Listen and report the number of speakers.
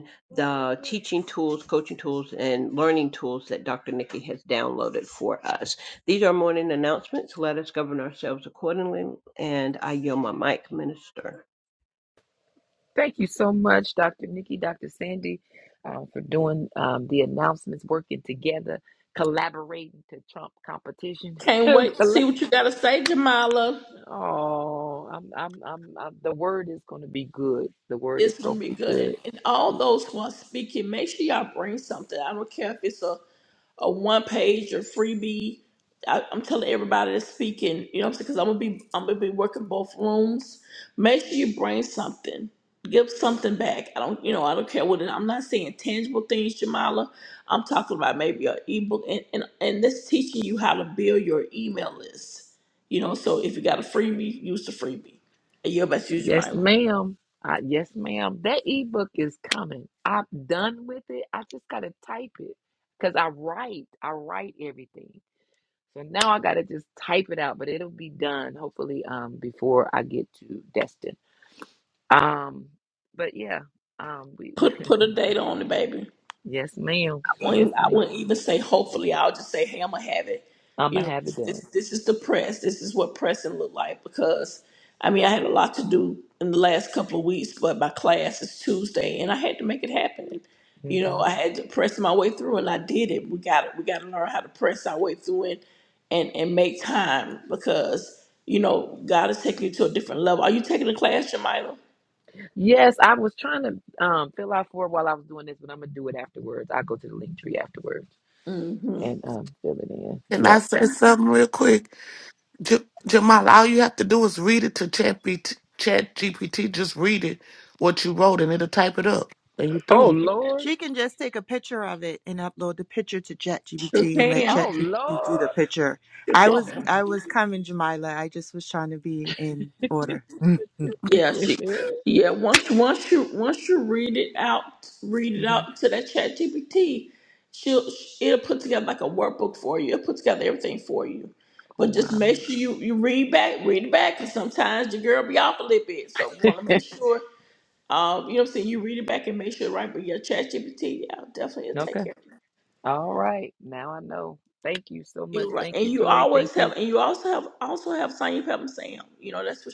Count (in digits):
5